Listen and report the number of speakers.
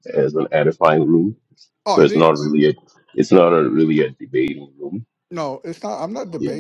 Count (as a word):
two